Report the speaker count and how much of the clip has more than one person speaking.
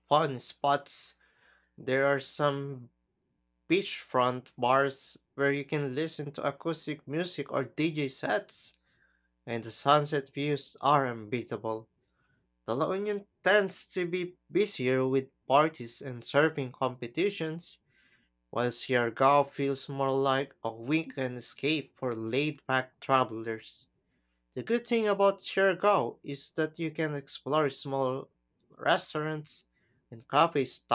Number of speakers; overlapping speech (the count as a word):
one, no overlap